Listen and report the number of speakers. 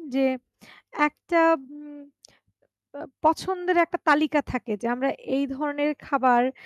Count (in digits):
1